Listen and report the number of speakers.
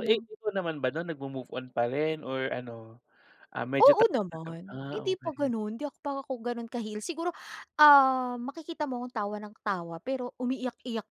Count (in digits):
2